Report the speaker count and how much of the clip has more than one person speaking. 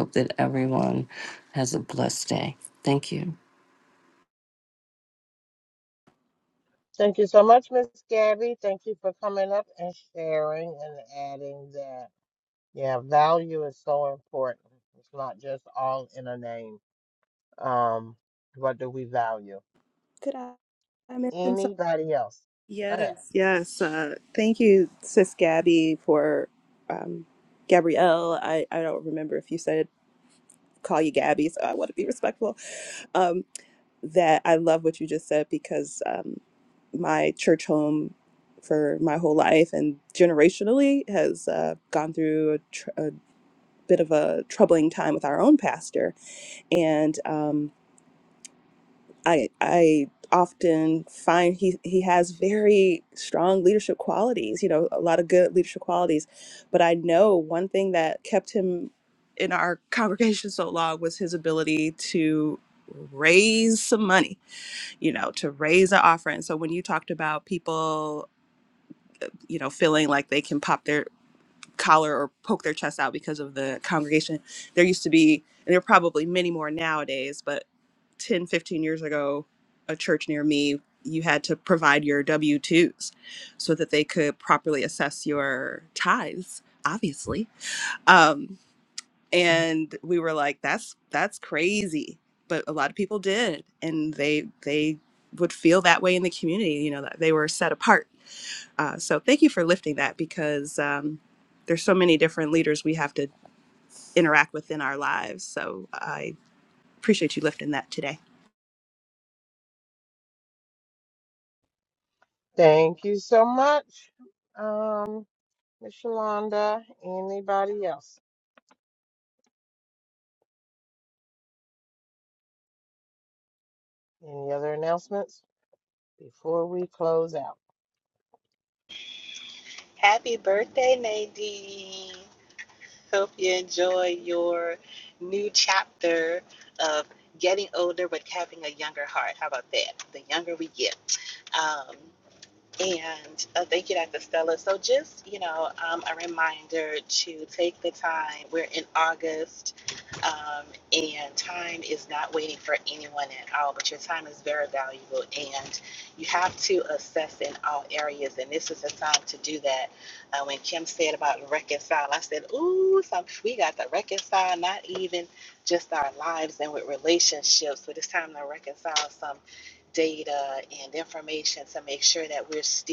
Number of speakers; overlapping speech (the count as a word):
four, under 1%